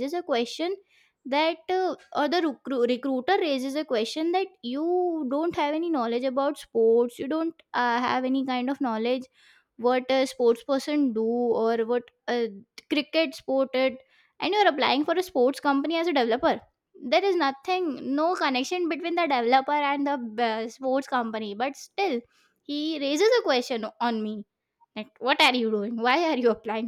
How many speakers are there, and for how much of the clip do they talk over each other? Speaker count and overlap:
1, no overlap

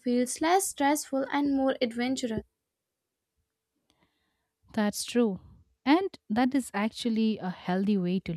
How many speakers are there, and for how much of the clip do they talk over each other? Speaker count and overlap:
2, no overlap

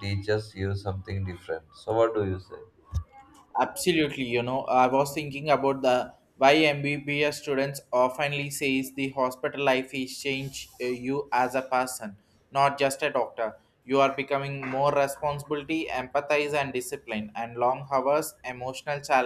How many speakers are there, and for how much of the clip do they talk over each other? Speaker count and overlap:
2, no overlap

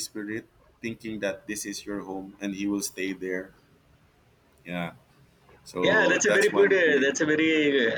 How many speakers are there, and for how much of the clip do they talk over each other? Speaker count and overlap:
2, about 16%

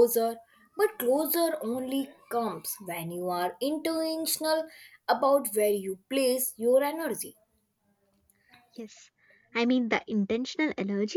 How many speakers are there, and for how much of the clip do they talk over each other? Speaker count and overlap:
2, no overlap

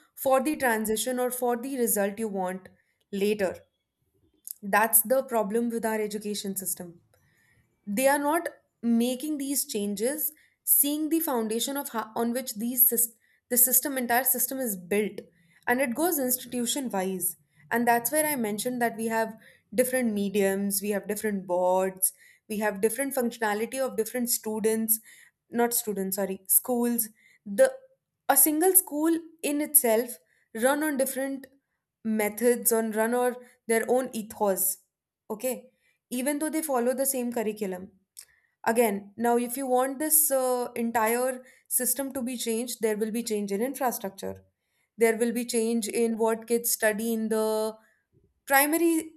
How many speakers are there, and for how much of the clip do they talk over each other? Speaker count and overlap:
1, no overlap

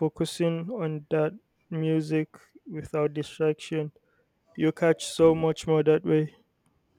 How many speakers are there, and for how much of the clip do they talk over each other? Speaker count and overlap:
1, no overlap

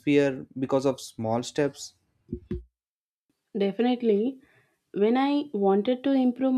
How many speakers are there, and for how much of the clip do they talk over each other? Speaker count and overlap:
2, no overlap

